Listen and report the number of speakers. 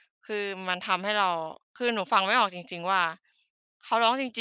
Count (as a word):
one